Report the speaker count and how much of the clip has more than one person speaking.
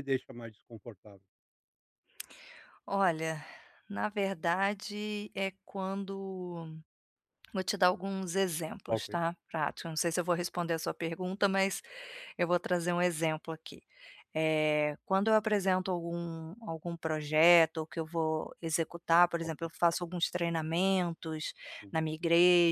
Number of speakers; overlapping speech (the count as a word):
two, about 1%